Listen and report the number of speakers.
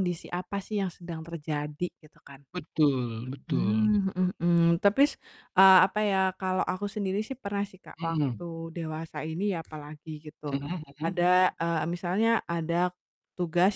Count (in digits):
2